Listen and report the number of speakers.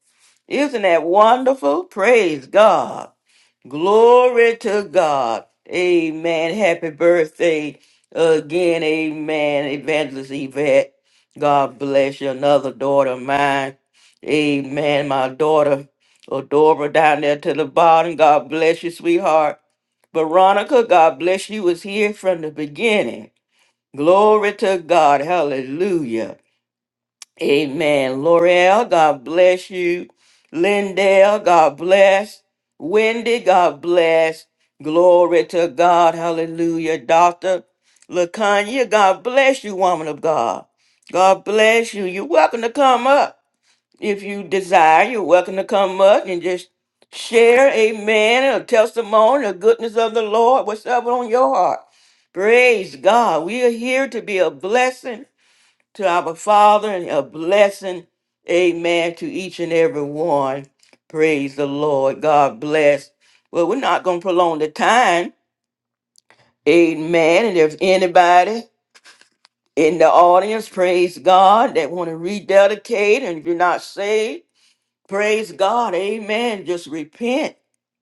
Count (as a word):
one